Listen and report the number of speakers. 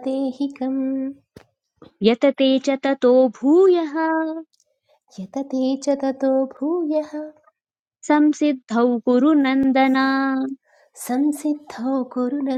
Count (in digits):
2